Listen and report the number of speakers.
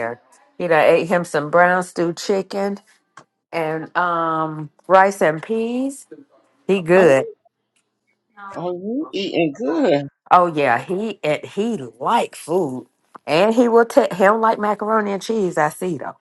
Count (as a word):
two